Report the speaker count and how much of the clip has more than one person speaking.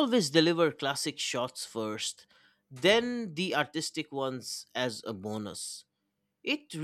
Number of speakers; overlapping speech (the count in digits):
1, no overlap